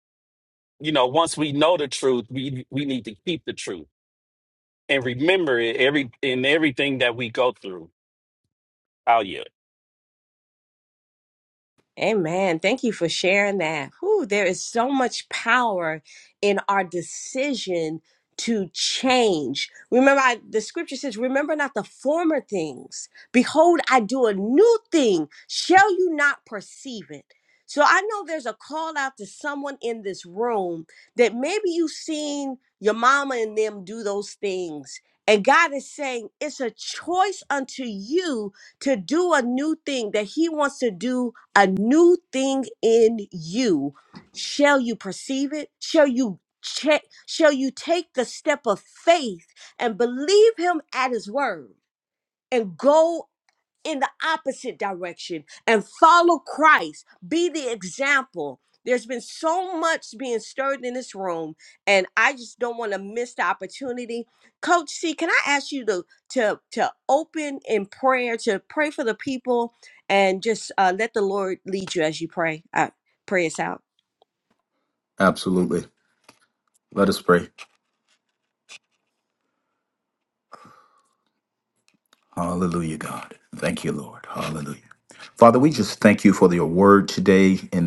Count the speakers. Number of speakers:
three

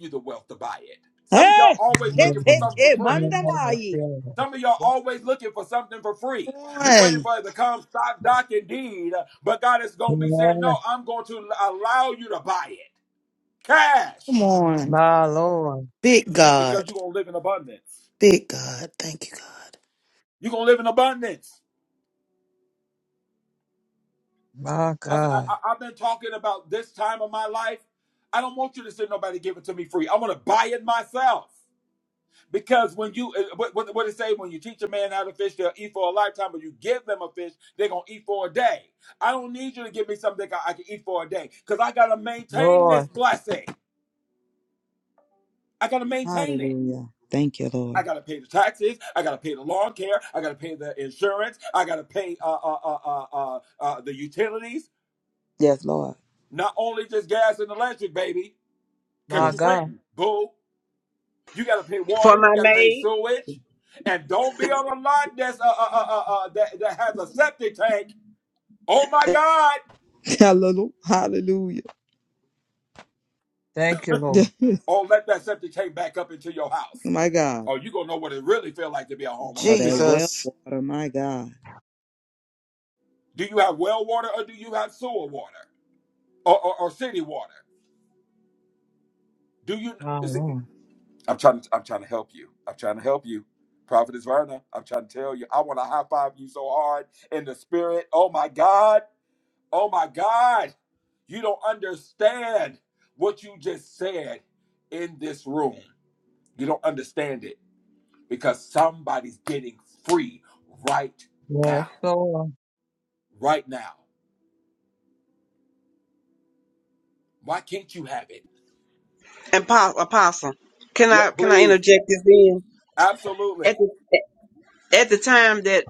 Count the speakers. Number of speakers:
five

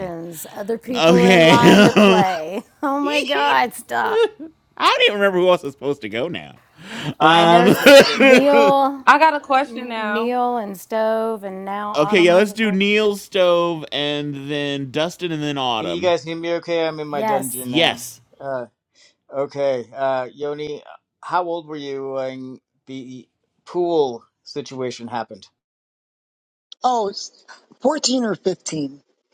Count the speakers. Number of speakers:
five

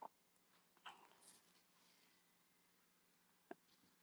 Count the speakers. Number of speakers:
zero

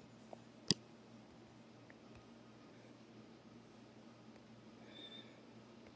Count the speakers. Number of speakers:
zero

